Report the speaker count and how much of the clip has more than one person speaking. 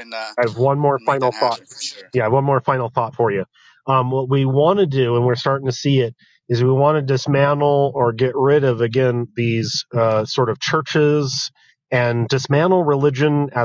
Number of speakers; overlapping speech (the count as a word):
two, about 4%